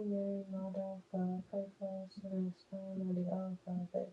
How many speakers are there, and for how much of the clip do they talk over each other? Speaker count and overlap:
1, no overlap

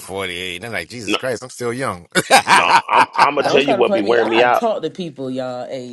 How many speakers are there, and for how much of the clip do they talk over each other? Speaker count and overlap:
3, about 24%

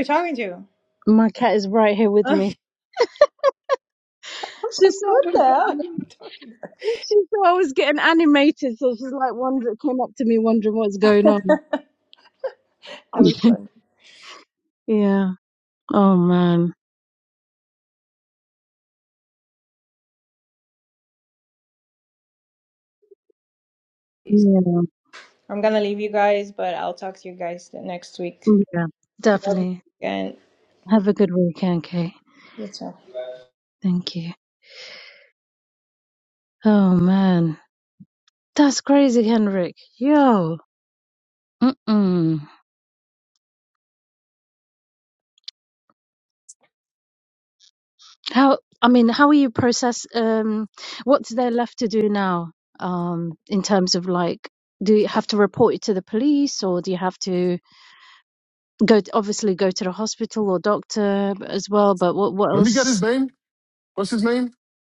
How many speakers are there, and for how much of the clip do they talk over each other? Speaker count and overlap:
3, about 3%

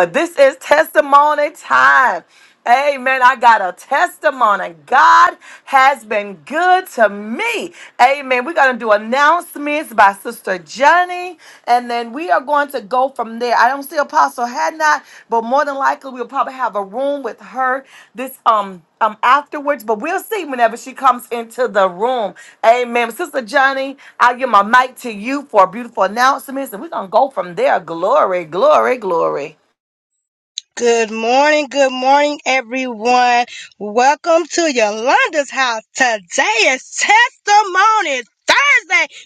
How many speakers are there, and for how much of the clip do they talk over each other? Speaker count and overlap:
2, no overlap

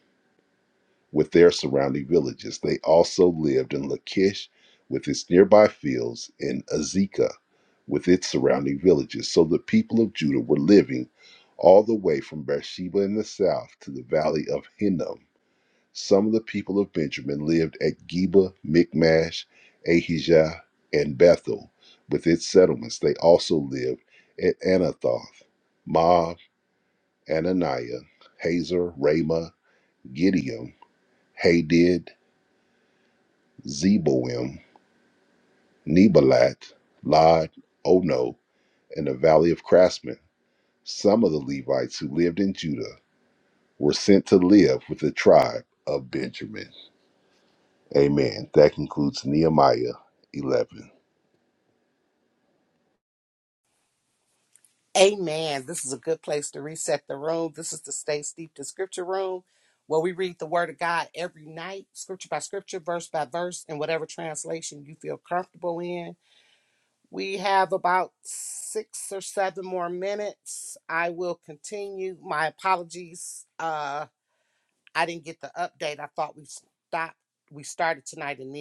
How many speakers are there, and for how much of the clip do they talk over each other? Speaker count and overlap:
2, no overlap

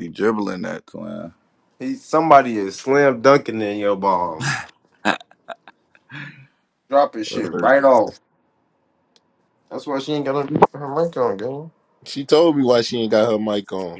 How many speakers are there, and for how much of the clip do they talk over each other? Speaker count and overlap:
3, about 3%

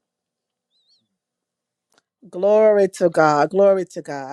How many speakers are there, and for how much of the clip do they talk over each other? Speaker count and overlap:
1, no overlap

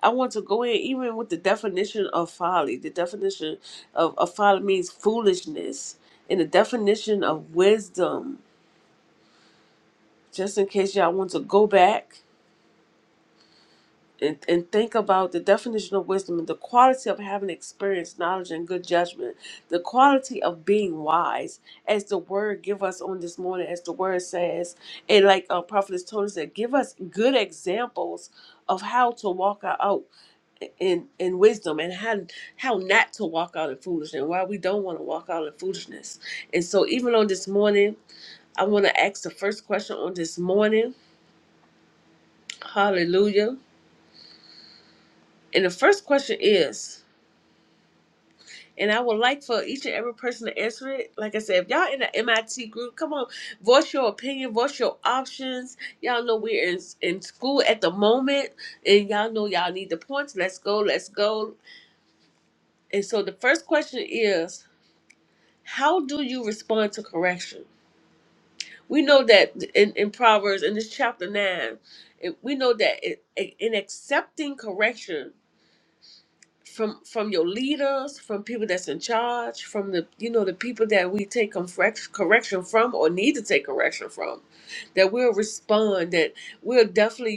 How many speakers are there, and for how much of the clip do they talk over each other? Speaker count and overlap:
1, no overlap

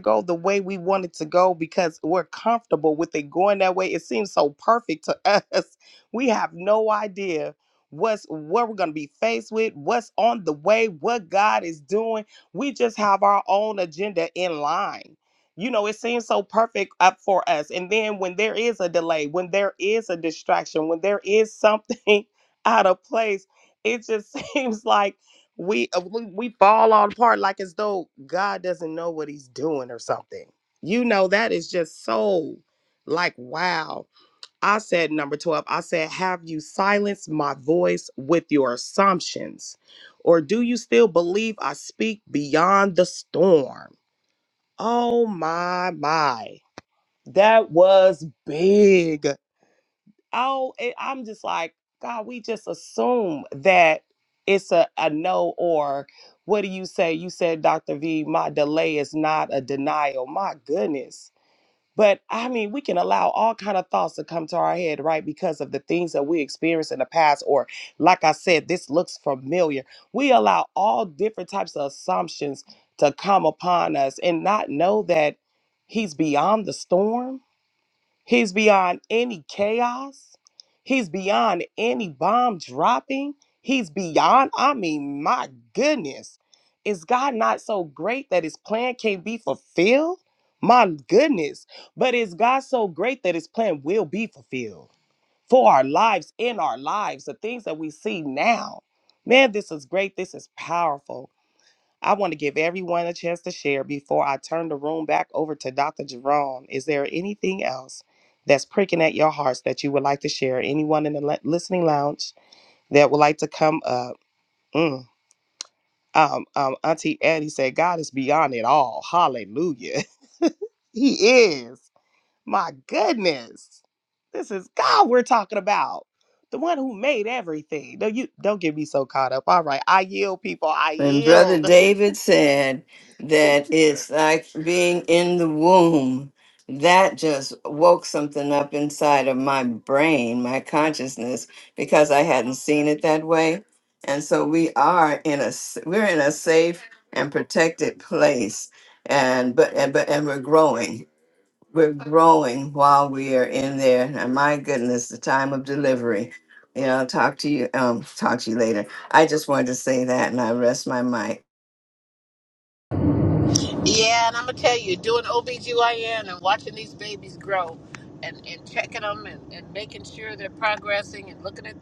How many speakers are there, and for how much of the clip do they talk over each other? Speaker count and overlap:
3, under 1%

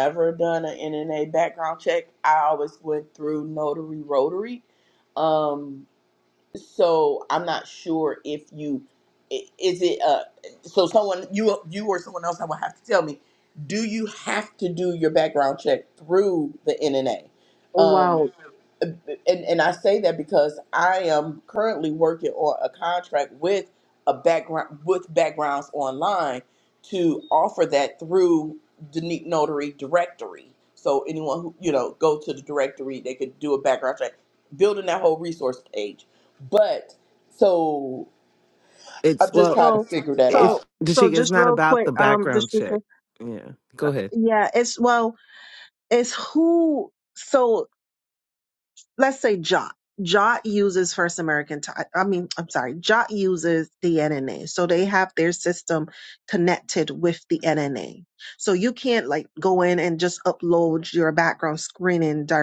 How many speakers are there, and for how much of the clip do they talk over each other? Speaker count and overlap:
3, about 5%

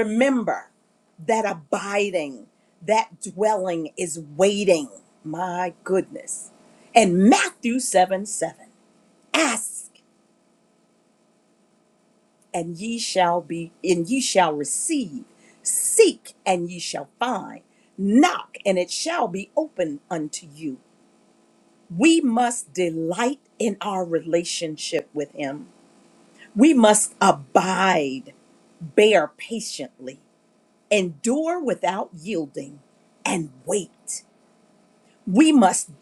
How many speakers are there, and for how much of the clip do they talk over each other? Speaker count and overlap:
1, no overlap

